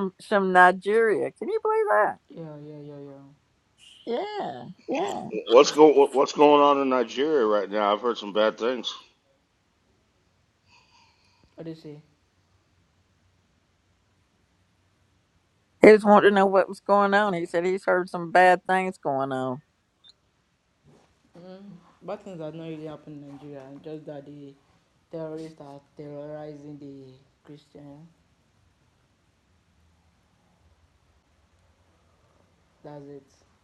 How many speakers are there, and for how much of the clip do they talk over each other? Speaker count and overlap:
3, no overlap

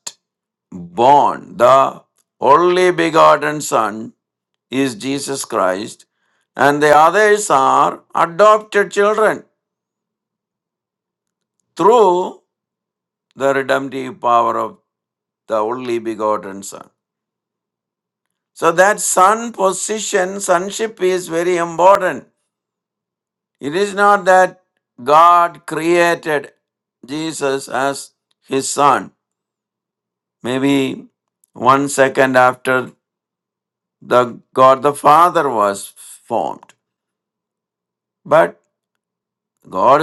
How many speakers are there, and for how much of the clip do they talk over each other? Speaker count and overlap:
1, no overlap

